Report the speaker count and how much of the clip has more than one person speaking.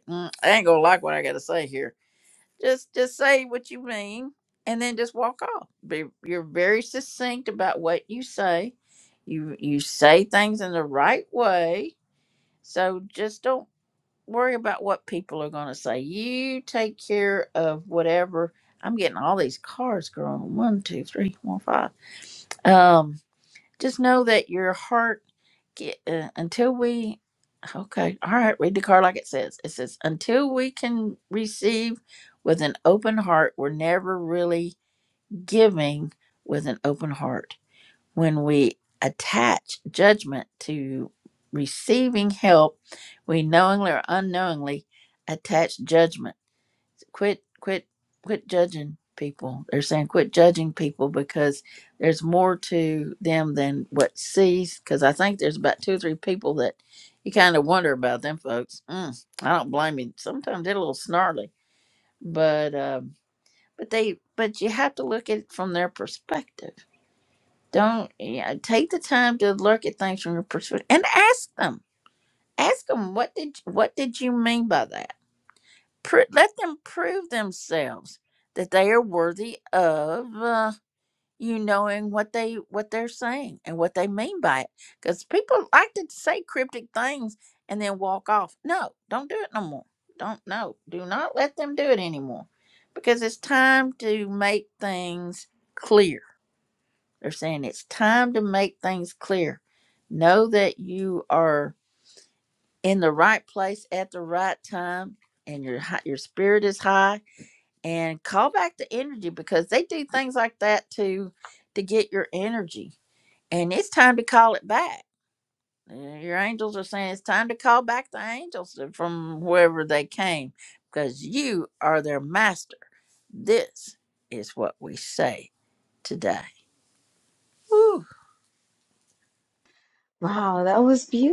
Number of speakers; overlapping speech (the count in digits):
2, no overlap